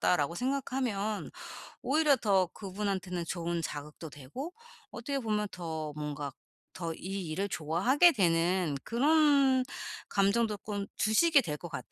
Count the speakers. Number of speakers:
1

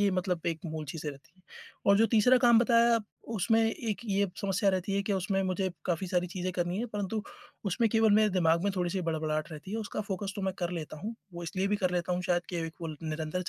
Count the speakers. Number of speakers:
1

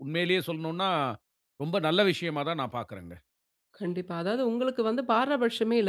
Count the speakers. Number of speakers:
2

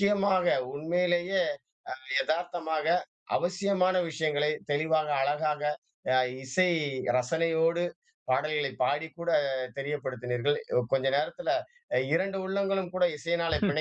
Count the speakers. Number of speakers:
1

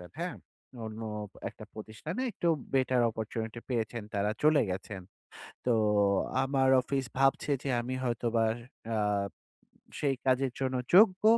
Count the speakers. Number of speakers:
1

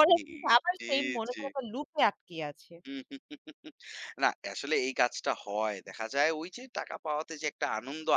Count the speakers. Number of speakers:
2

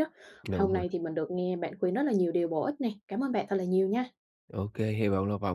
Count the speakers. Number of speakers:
2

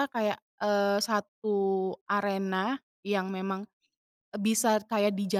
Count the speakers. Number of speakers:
1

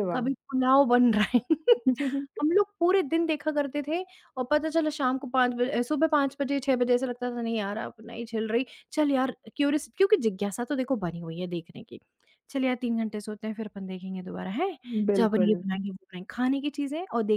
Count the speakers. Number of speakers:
2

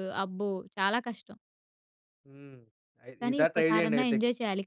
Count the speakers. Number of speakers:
2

